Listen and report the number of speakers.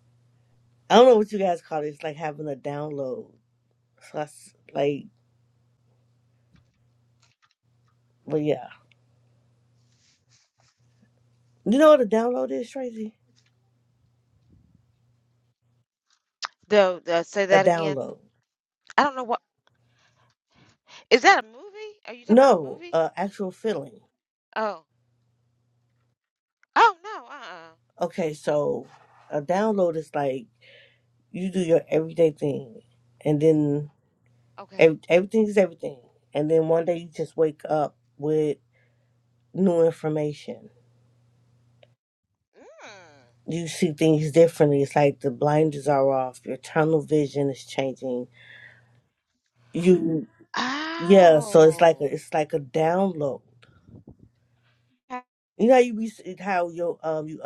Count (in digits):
2